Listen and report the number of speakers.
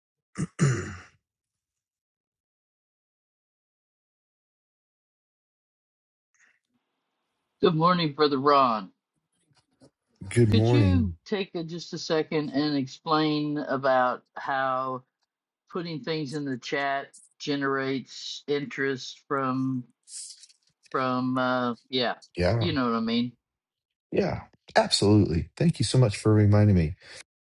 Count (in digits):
2